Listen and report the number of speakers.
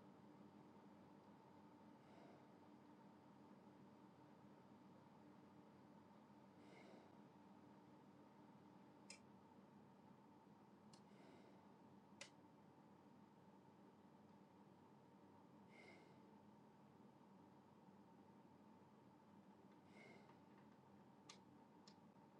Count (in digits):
0